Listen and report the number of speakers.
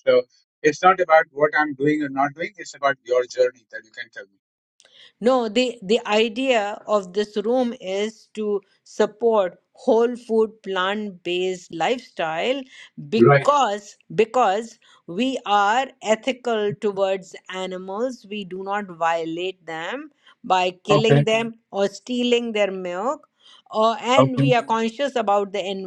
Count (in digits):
2